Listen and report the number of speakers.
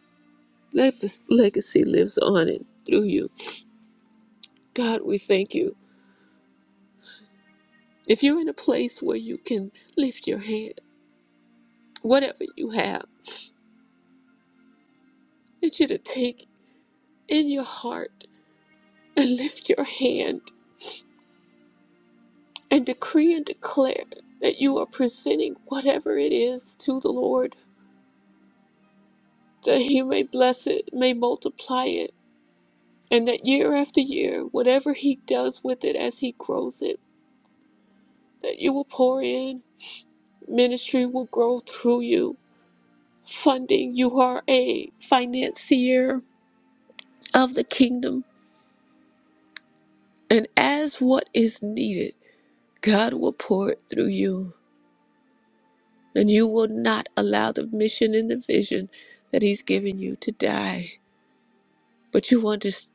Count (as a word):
one